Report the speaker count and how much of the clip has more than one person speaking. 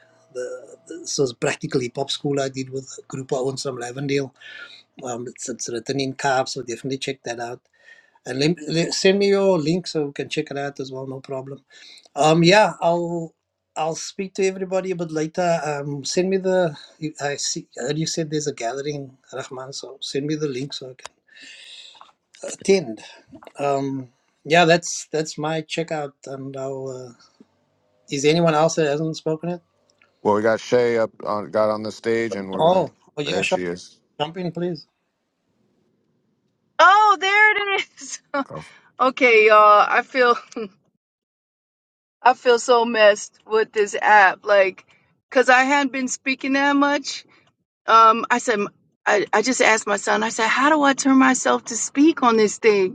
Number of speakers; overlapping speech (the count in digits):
3, about 1%